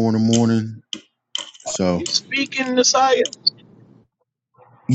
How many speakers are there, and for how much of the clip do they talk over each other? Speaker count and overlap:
2, about 2%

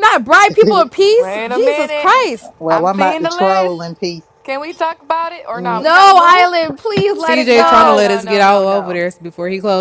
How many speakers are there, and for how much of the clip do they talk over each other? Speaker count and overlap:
4, about 47%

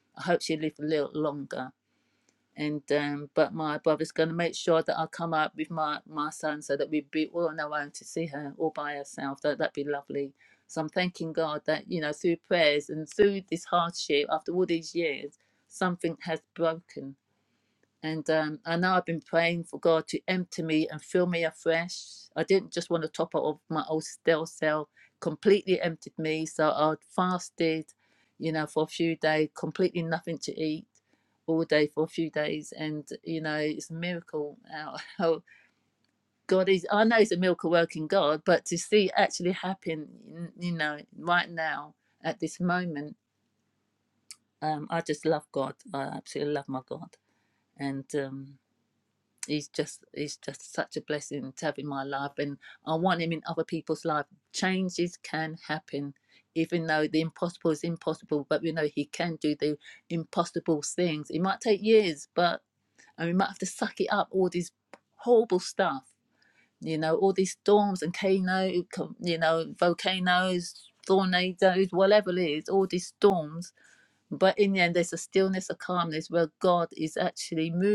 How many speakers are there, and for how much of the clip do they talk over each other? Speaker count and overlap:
1, no overlap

